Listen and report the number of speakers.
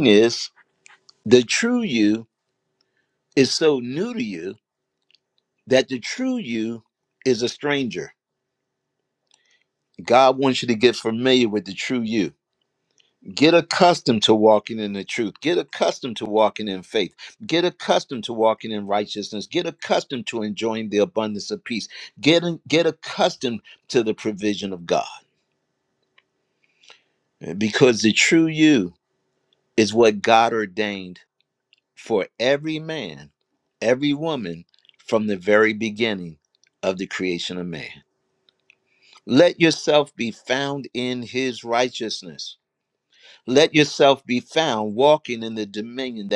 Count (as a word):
one